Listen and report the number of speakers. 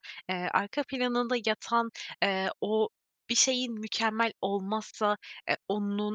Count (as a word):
one